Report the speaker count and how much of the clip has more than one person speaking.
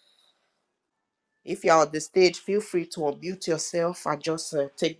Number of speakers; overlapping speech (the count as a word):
one, no overlap